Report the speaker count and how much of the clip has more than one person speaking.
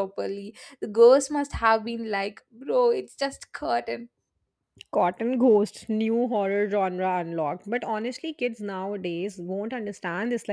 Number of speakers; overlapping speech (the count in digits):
2, no overlap